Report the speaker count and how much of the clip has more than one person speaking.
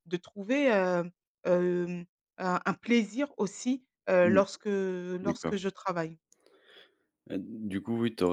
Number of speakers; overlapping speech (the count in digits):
2, about 6%